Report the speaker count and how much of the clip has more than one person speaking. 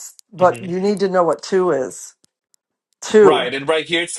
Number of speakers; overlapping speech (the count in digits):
2, about 14%